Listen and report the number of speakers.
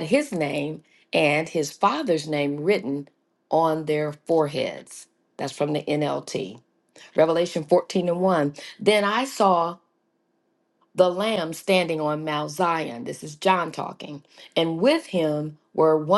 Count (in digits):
1